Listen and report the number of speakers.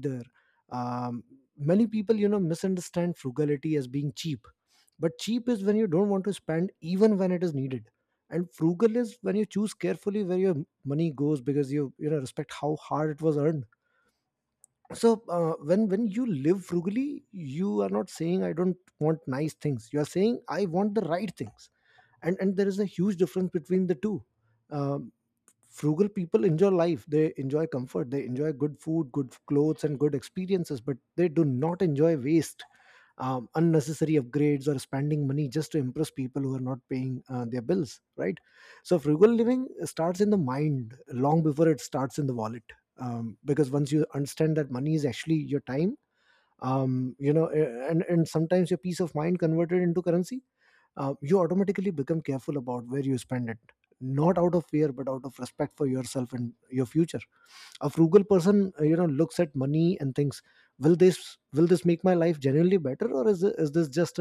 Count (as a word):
one